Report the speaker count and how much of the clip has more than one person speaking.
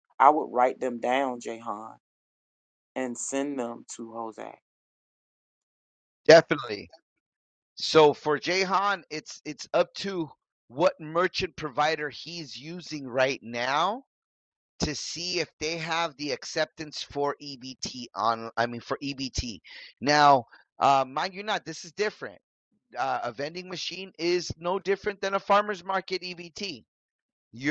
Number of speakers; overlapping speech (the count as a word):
two, no overlap